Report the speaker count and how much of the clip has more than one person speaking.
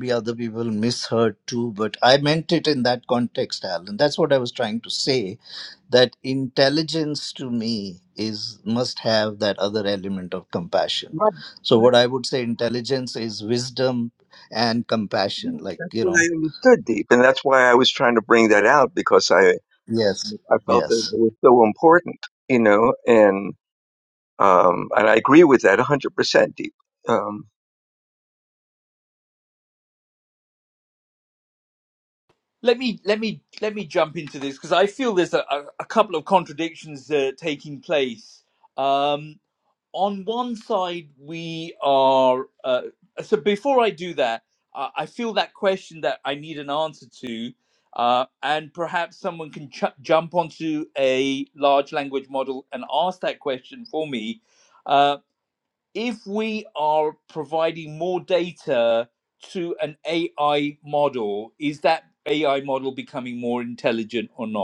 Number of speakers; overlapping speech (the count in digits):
3, about 2%